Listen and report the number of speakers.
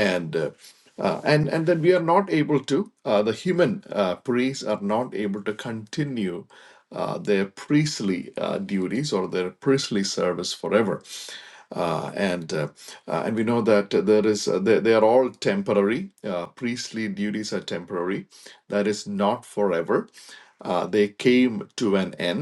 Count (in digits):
1